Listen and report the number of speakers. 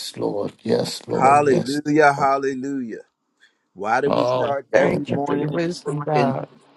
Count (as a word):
three